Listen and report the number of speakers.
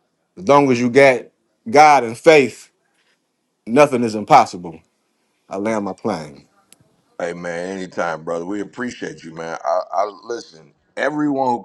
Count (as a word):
two